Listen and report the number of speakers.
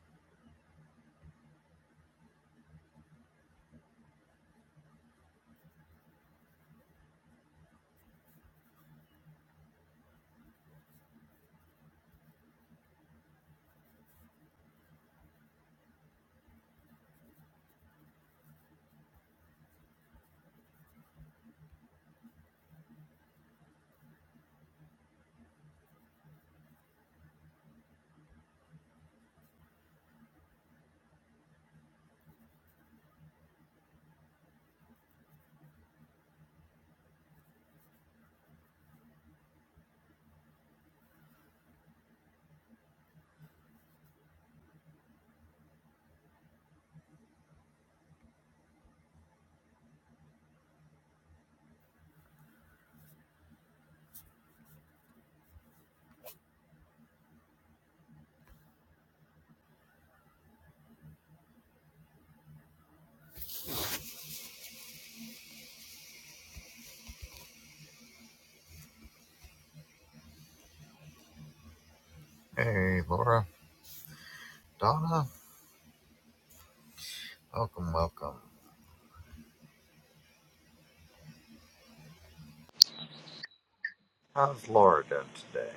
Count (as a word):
one